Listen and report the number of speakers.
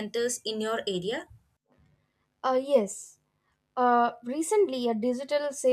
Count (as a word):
two